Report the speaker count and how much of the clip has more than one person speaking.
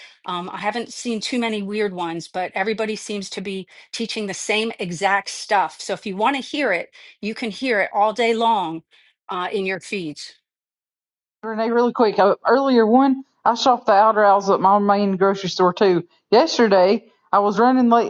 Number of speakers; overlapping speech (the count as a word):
two, no overlap